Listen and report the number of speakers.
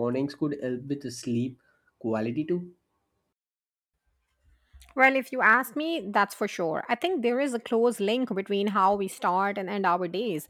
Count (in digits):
2